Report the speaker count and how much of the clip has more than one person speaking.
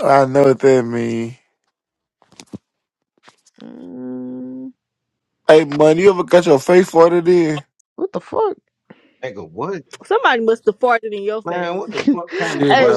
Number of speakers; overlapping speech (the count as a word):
four, about 7%